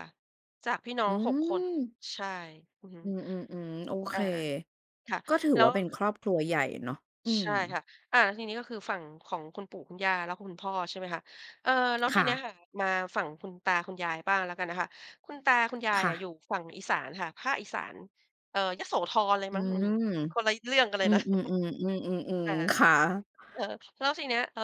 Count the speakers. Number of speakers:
2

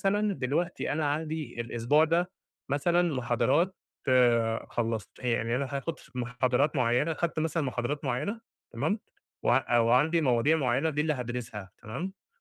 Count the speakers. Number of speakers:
1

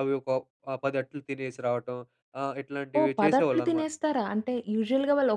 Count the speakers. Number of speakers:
2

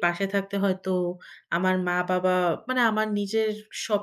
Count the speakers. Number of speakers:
1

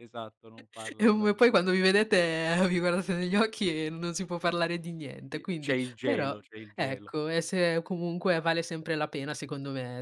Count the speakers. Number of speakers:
2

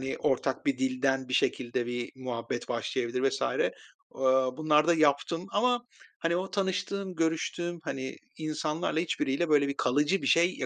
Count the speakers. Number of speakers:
1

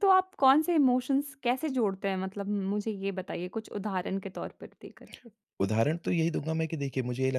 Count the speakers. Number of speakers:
2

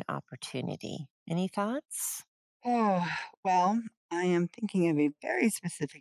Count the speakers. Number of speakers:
2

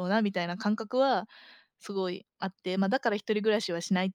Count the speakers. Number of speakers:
1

